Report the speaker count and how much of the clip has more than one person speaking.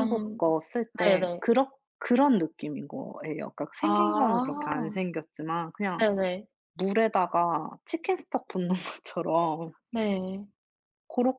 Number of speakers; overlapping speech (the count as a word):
two, about 17%